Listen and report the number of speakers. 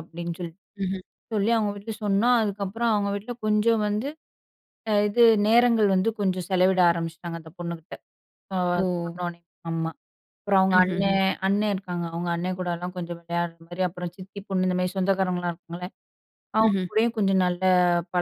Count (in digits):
2